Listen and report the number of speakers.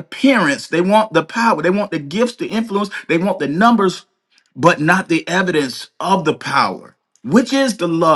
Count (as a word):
one